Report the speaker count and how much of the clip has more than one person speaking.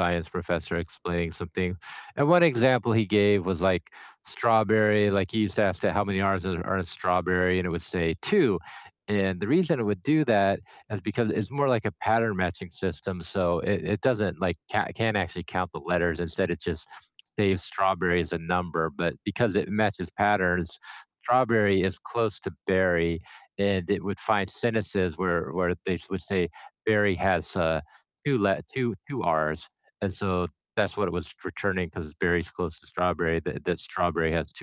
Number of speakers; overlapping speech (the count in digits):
1, no overlap